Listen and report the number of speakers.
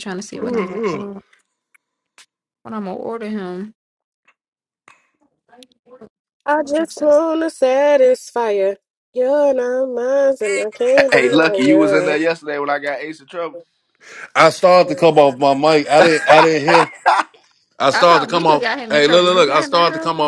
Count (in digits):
4